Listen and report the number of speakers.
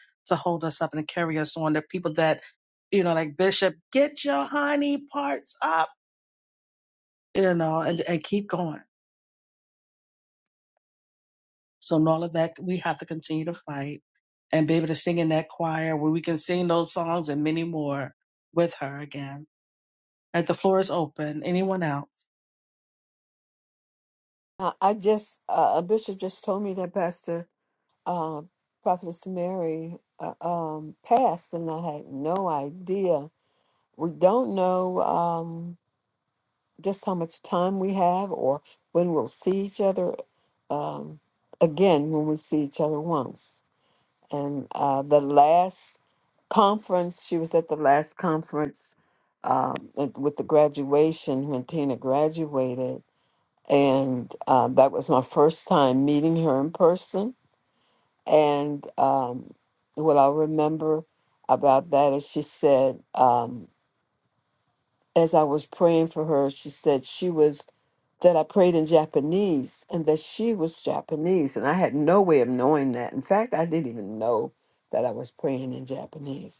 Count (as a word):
two